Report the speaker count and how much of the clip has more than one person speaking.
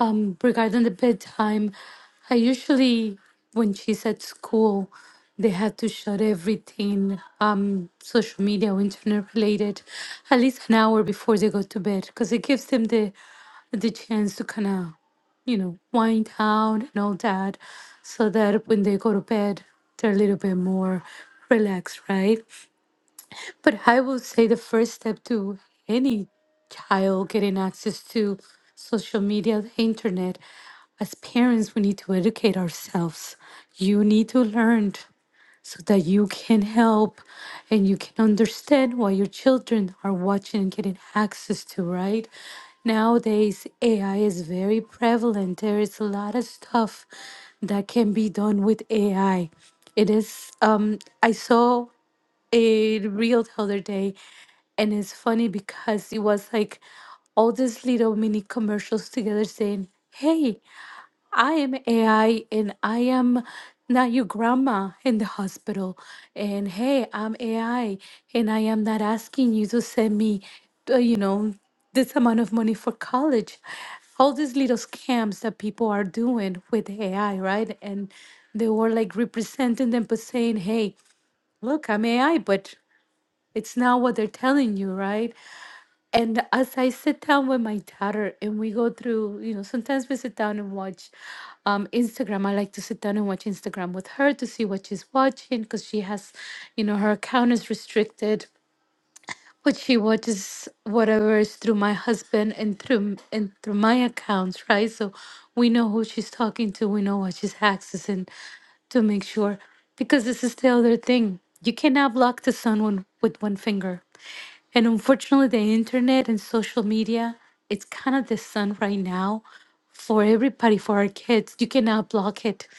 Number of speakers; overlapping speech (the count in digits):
1, no overlap